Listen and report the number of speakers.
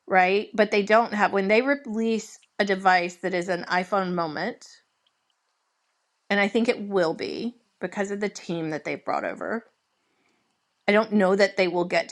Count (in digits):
1